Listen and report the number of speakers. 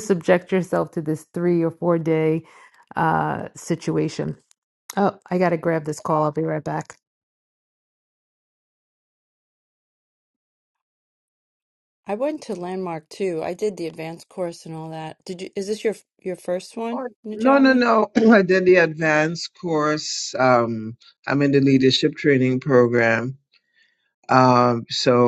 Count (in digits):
3